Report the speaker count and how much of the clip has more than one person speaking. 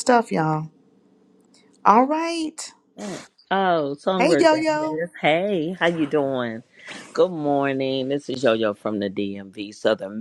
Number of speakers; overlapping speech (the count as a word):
two, about 8%